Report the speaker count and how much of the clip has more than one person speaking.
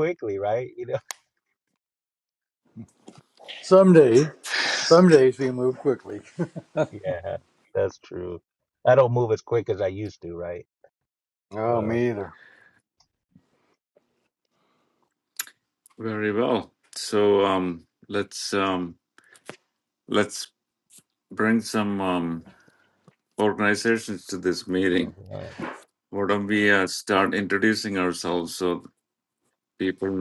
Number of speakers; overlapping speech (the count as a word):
three, about 1%